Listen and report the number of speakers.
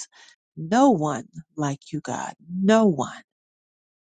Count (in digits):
1